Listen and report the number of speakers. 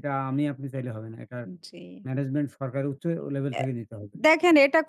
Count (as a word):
two